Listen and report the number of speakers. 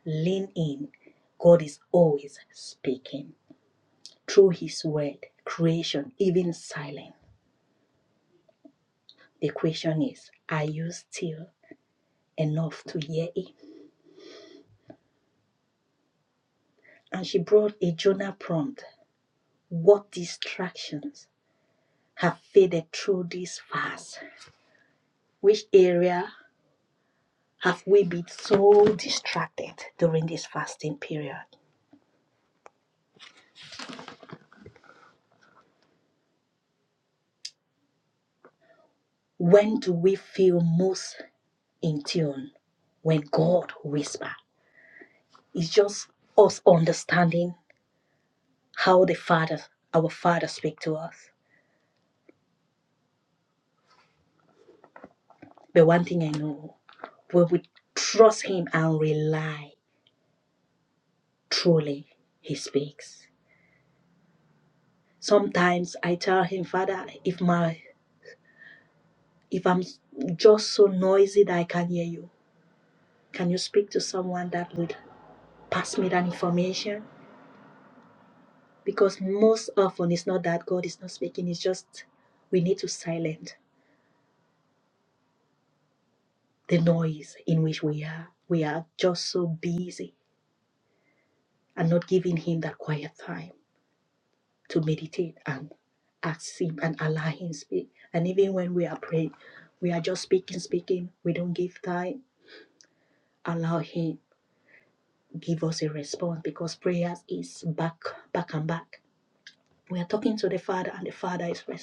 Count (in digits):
1